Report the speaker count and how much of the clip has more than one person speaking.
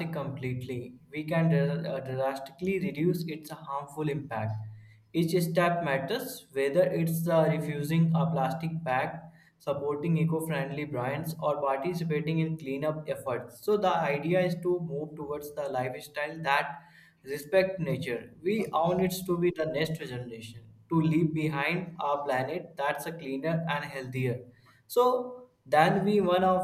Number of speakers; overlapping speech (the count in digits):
1, no overlap